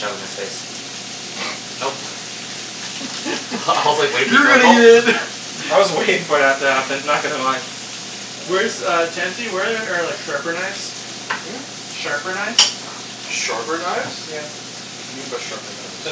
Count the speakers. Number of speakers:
four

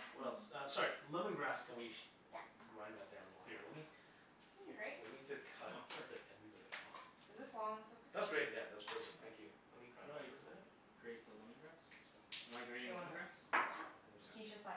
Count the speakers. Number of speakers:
four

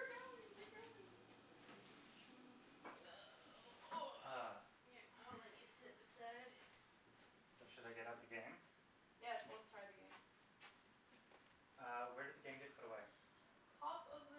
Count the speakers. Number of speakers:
three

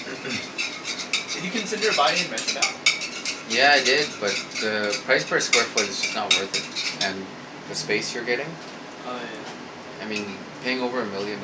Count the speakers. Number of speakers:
two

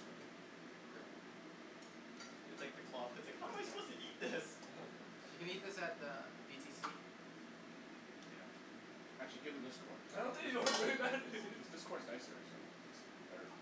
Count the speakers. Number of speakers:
four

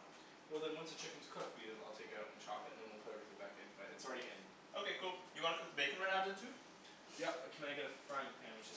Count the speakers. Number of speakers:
two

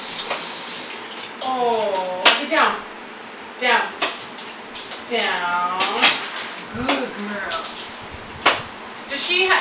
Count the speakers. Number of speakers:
one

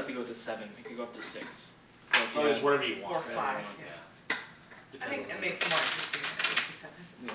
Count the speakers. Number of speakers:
three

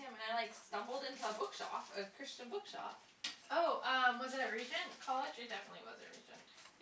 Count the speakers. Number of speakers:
two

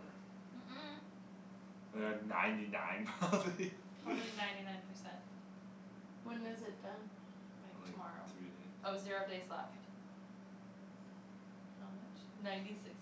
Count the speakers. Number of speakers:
three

